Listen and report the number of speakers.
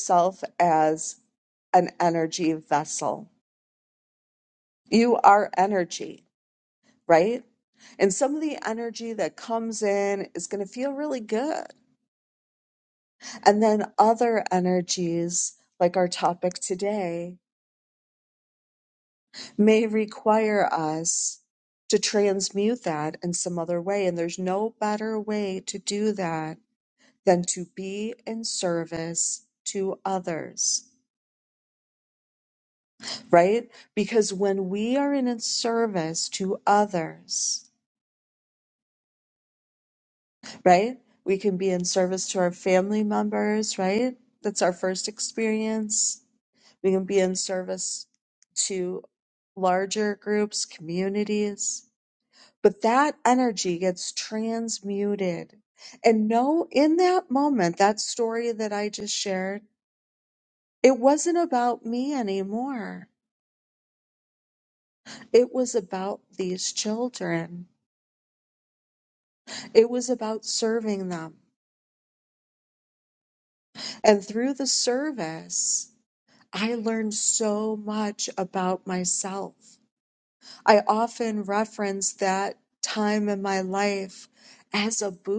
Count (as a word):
one